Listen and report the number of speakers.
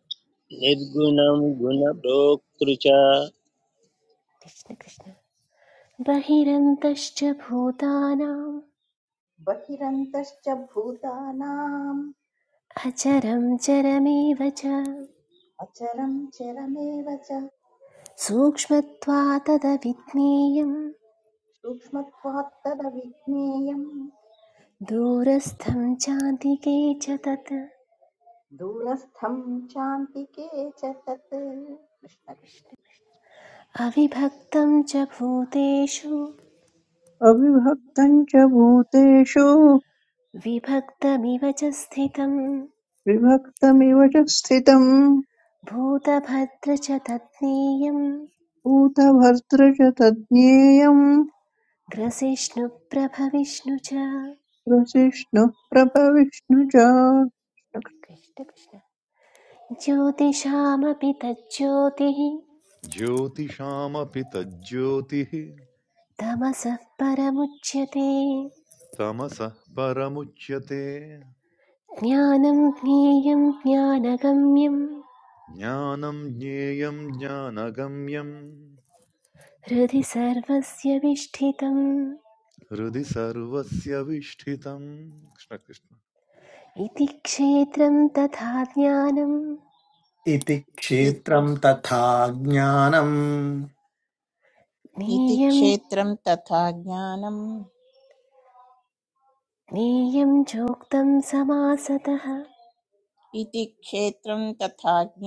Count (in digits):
7